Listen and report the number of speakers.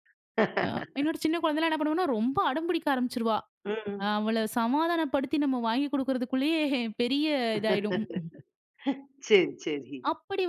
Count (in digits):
2